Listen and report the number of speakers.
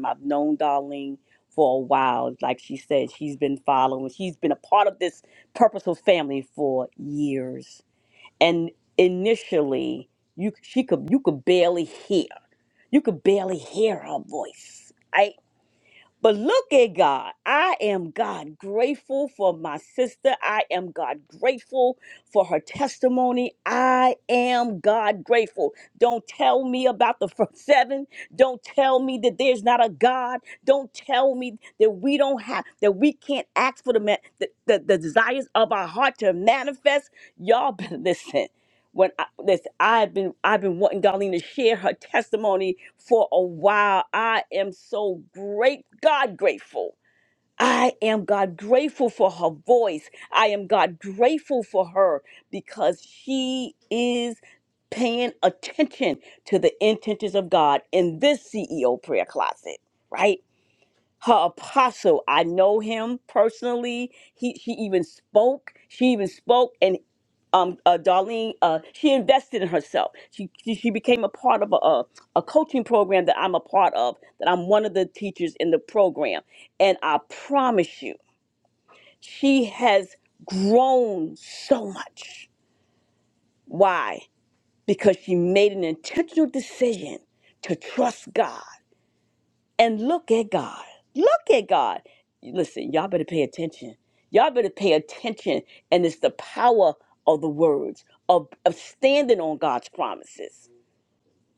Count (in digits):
1